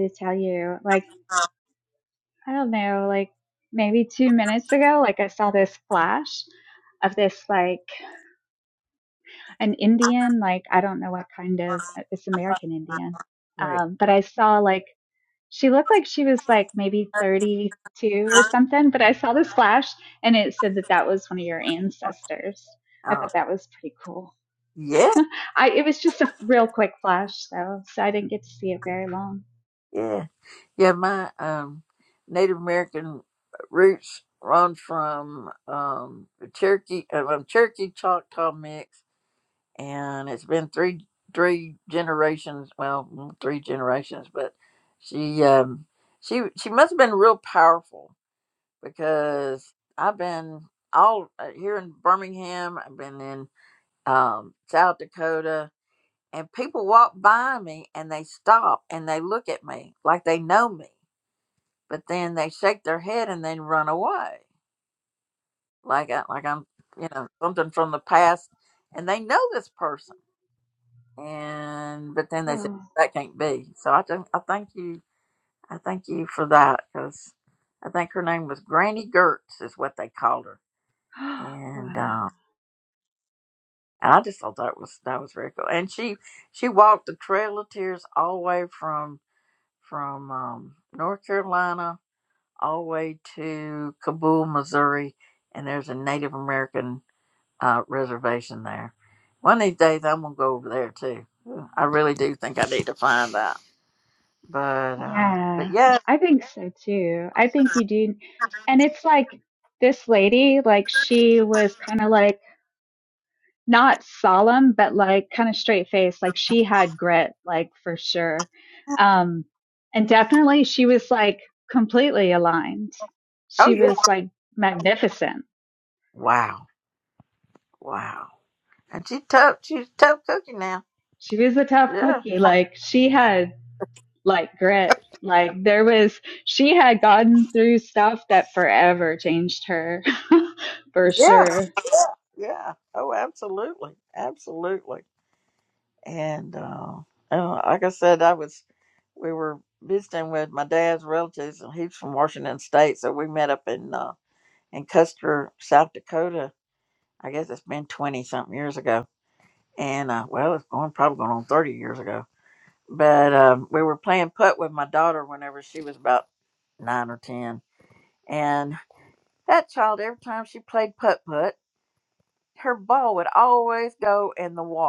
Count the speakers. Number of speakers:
2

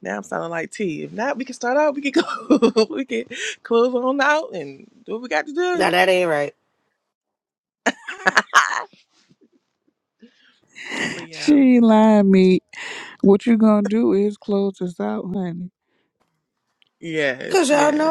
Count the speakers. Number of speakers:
3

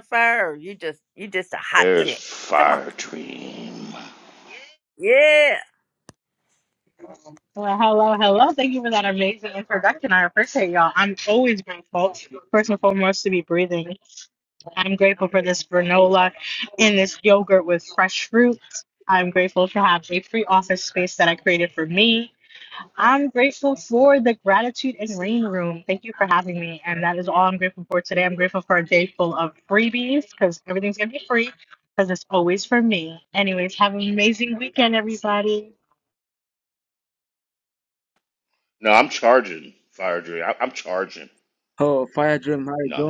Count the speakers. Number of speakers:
4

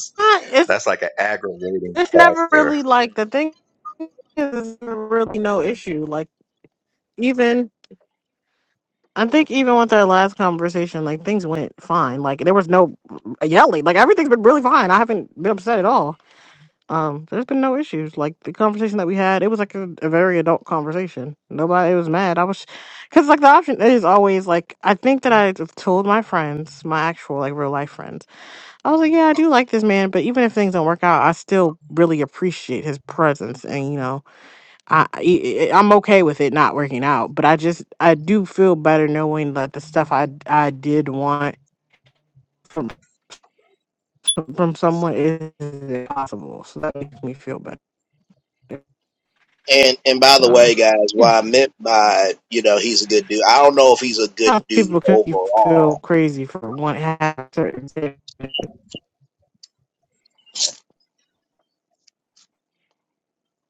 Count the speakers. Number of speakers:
3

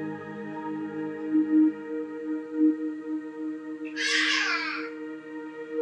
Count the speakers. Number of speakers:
0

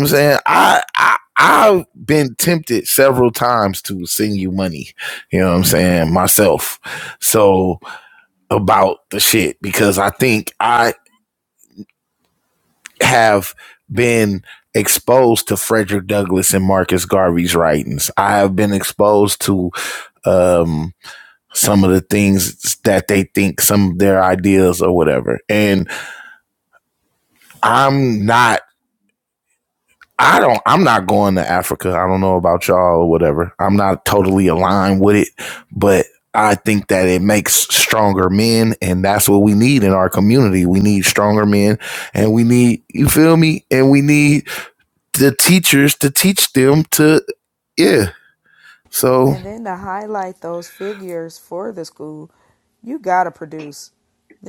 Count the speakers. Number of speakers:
2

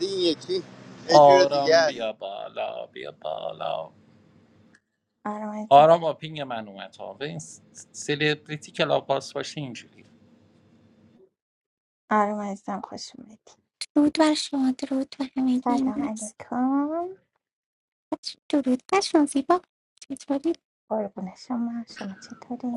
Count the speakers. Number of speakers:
4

